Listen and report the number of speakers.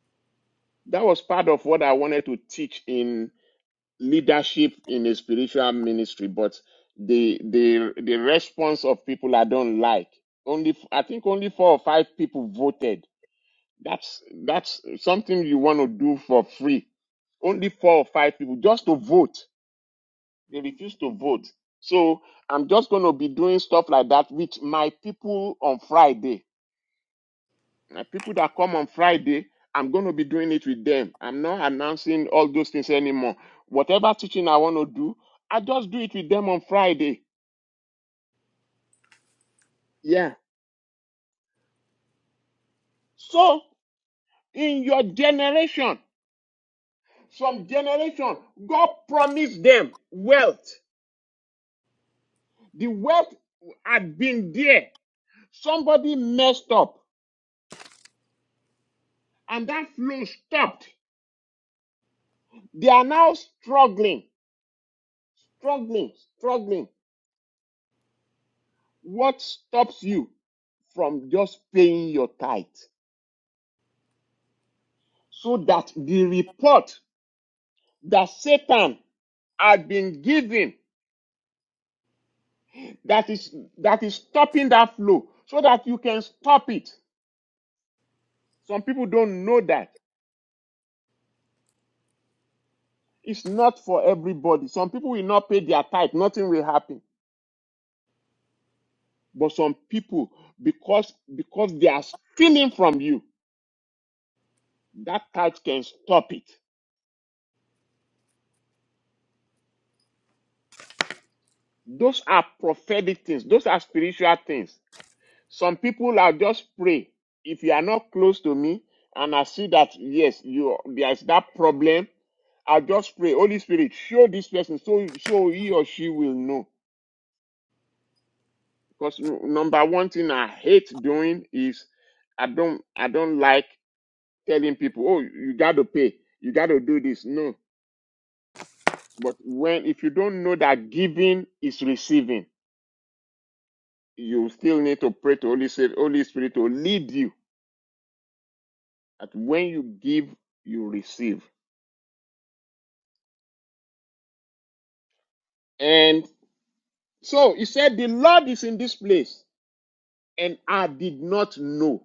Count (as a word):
one